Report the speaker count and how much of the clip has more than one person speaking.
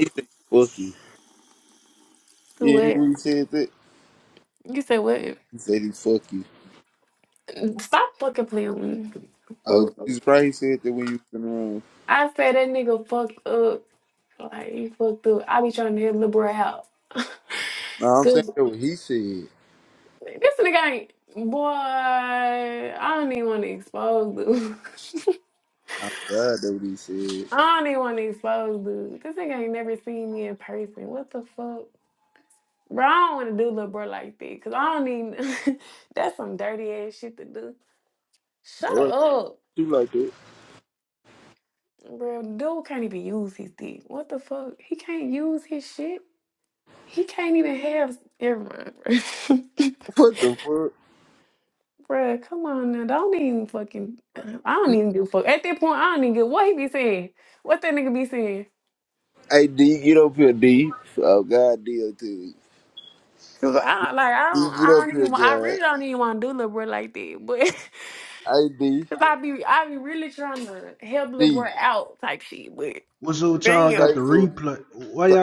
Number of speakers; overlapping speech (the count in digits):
3, about 5%